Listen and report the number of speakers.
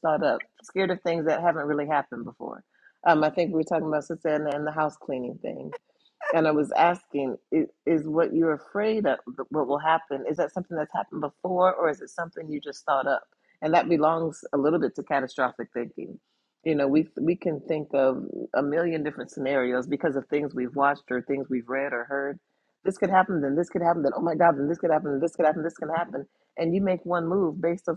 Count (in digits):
1